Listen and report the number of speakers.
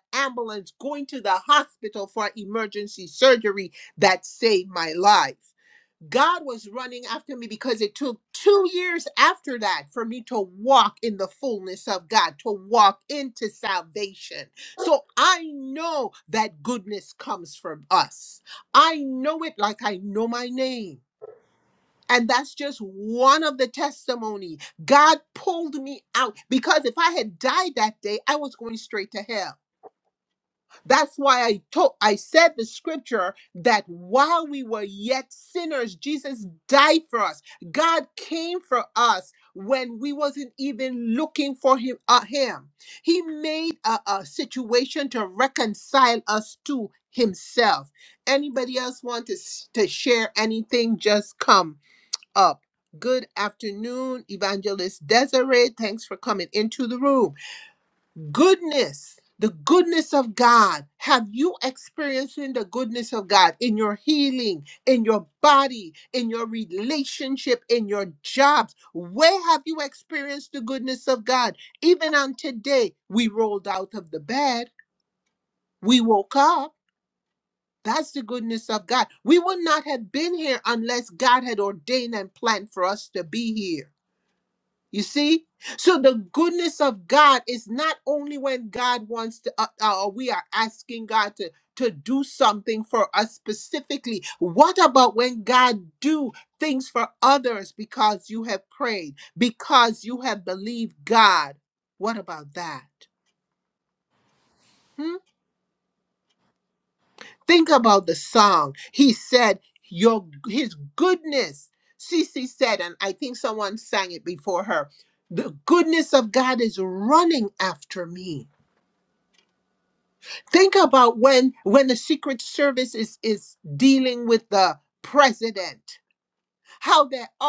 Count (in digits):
1